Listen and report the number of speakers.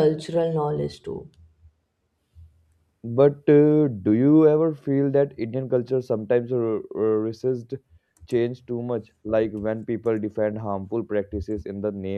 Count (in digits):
2